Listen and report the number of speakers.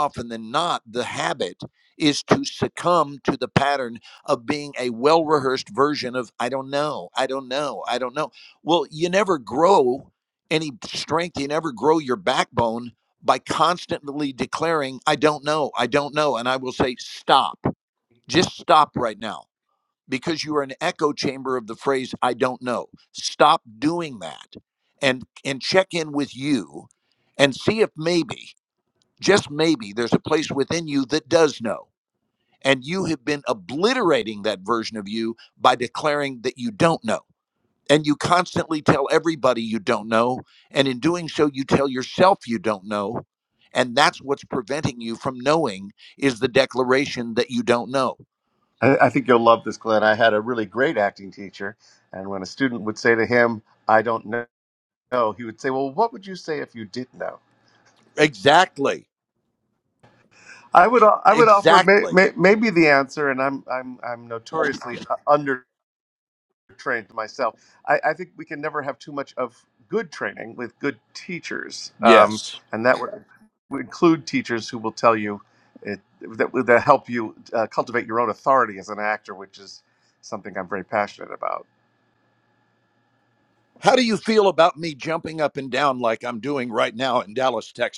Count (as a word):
two